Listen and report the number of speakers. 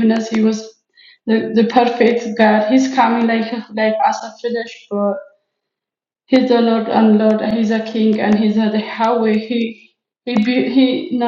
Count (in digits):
1